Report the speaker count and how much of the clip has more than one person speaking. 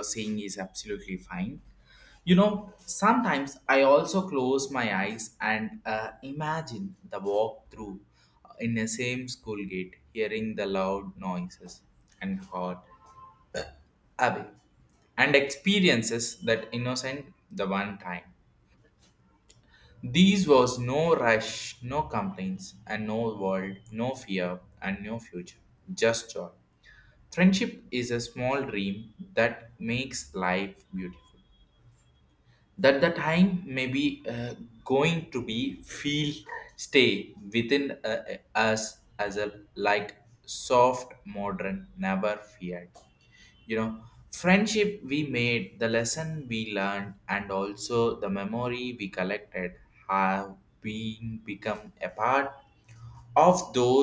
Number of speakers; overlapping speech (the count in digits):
1, no overlap